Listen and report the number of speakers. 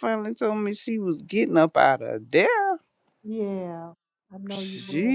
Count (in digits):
2